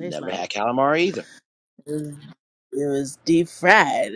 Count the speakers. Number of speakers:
two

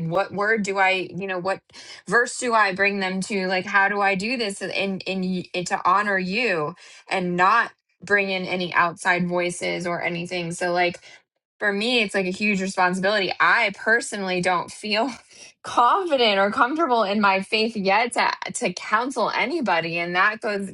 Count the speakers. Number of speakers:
one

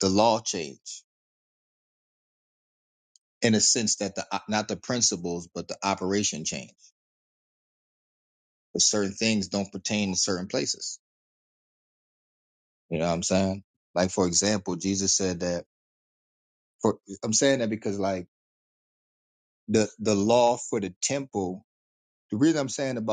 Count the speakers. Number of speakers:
one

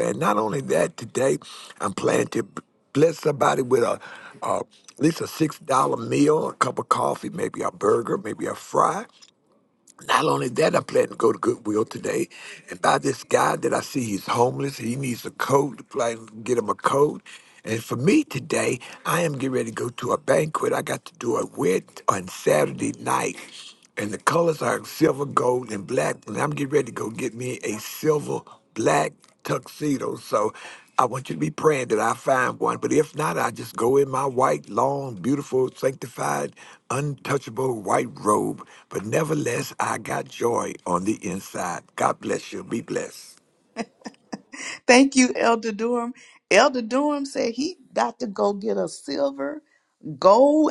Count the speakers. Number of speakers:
two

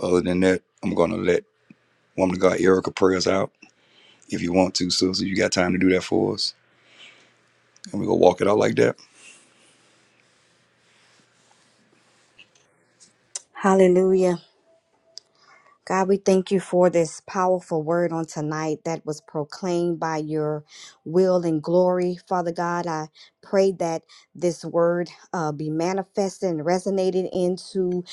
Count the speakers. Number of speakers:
two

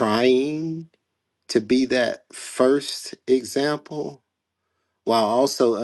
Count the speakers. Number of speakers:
one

